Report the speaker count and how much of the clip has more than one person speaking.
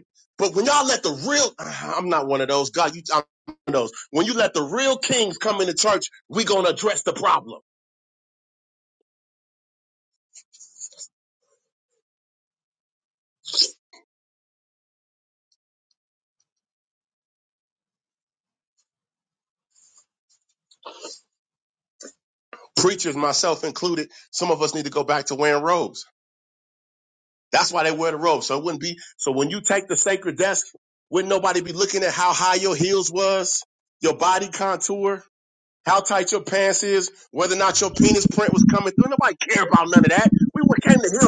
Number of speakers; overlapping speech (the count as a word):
one, no overlap